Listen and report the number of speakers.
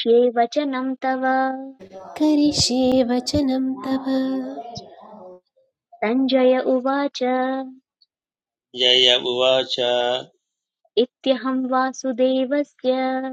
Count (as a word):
three